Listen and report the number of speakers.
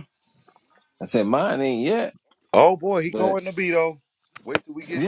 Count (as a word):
two